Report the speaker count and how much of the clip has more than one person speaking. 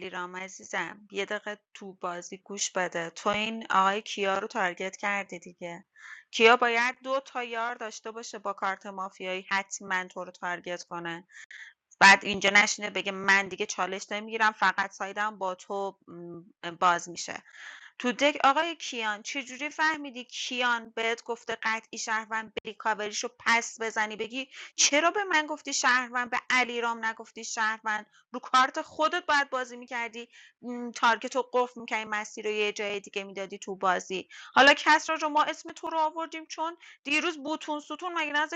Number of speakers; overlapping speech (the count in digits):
1, no overlap